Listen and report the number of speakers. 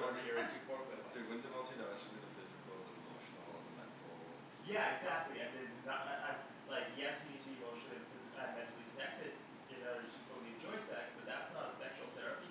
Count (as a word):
two